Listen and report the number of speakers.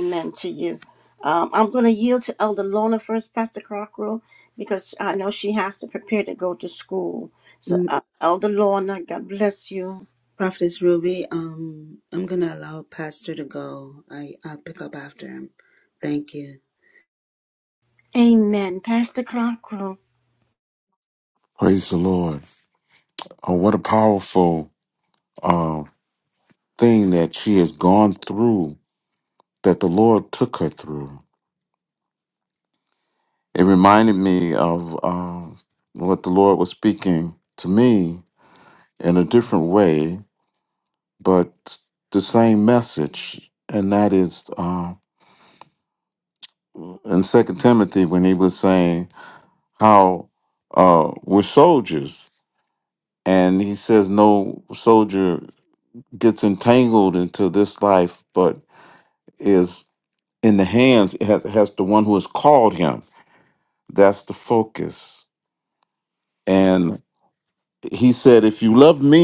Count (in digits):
3